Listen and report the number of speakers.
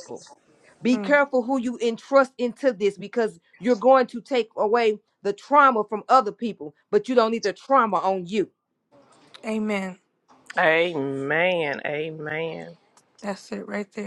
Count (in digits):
3